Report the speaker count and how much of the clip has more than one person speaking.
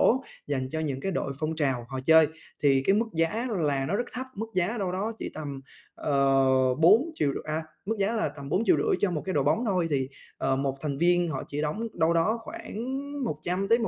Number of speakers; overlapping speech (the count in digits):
1, no overlap